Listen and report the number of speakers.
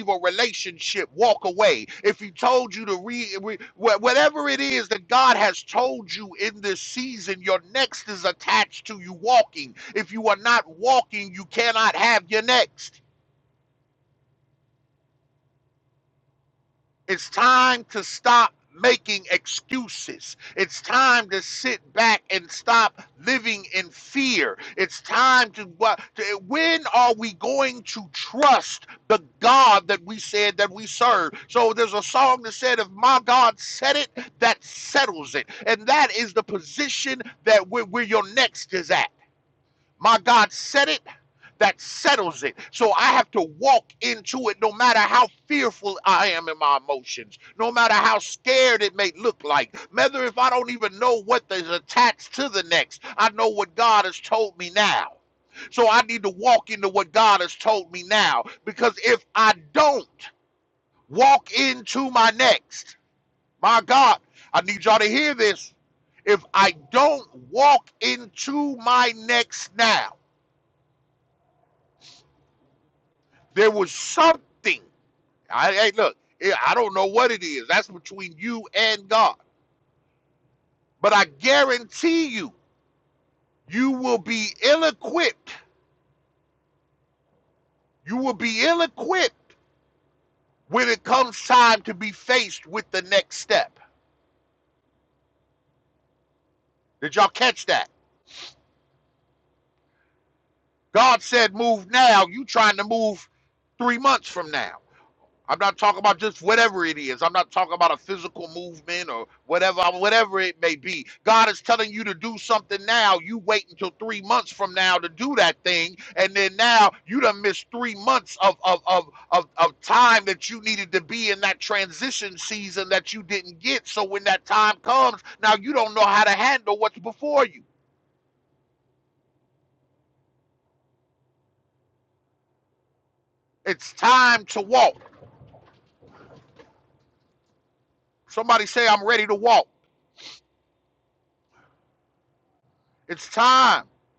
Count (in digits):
1